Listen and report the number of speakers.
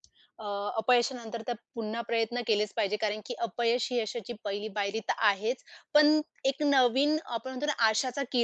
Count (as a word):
one